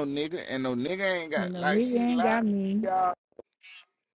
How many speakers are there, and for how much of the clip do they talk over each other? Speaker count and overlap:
two, about 27%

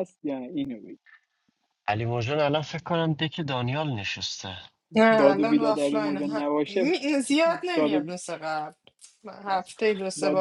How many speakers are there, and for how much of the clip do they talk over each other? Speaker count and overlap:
three, about 22%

